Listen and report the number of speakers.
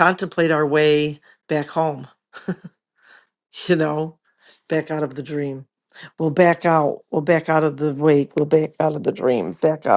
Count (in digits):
1